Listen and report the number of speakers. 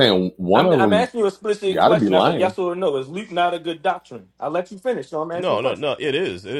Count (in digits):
3